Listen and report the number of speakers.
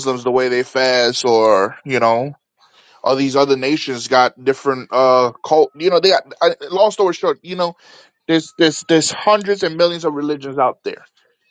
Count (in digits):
1